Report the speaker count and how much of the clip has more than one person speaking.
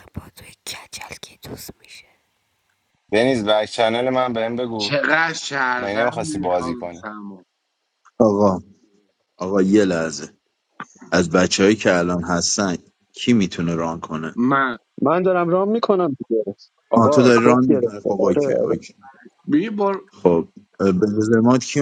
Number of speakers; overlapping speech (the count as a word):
five, about 14%